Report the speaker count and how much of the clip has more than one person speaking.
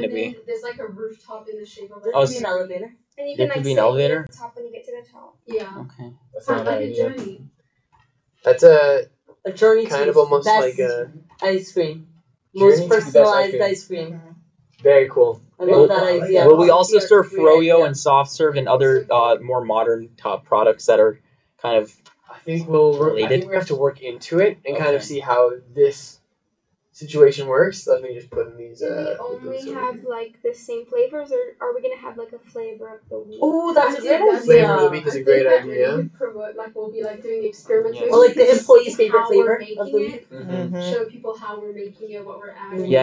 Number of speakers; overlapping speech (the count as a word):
five, about 37%